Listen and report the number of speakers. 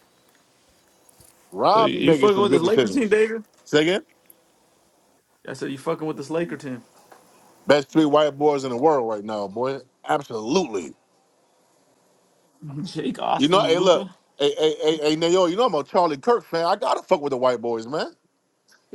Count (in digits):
2